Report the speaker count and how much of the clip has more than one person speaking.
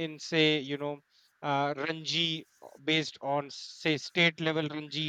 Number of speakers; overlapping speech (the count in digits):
1, no overlap